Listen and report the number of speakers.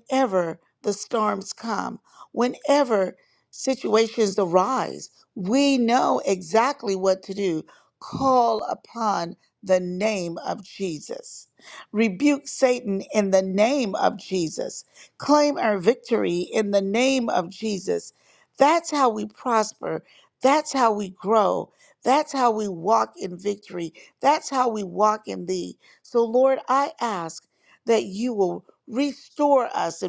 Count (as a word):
one